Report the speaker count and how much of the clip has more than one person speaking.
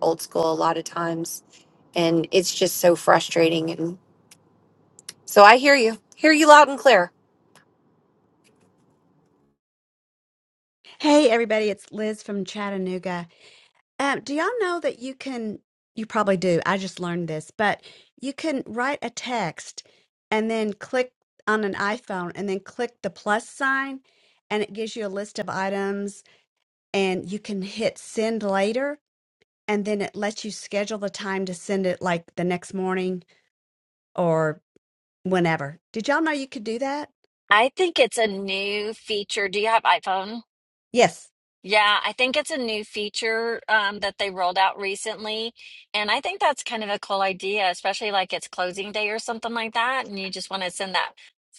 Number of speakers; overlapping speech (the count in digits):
3, no overlap